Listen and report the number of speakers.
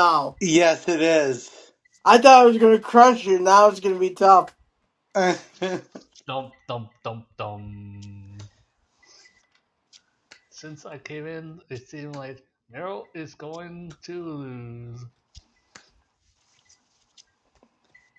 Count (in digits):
3